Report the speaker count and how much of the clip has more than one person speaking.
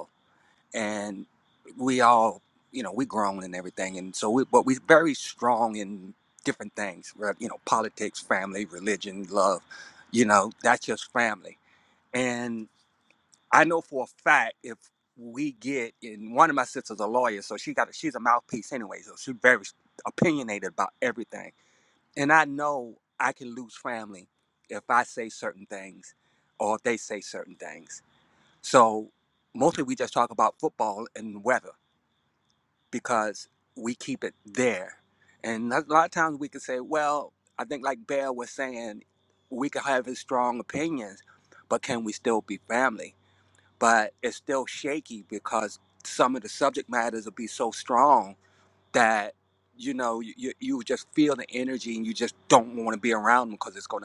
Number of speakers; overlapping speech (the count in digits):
1, no overlap